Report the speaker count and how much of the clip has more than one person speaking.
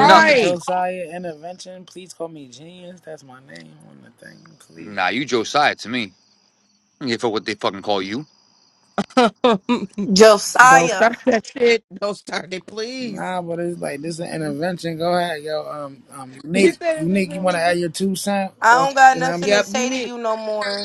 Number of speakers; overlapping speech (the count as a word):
four, about 18%